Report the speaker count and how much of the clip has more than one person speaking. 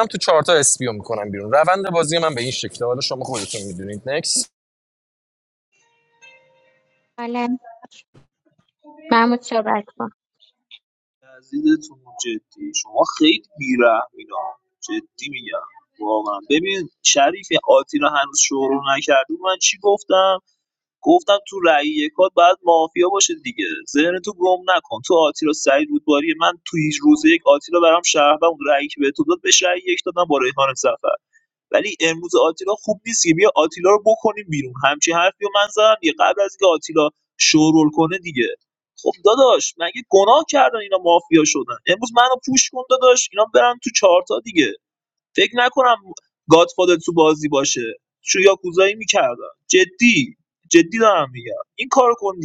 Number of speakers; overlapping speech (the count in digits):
3, no overlap